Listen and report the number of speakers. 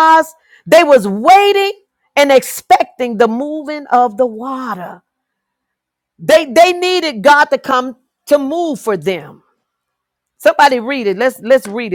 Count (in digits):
1